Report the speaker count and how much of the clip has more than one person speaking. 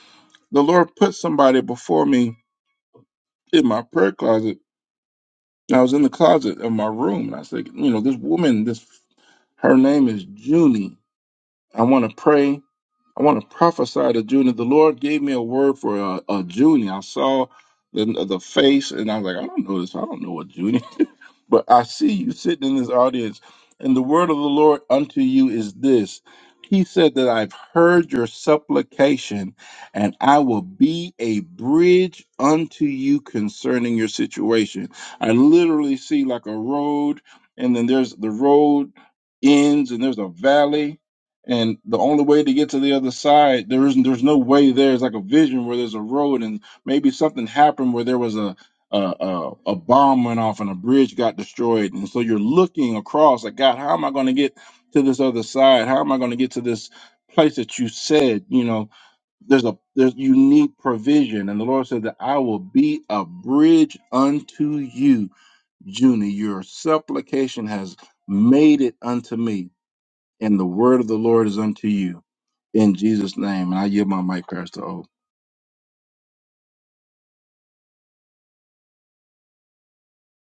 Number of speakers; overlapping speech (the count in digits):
1, no overlap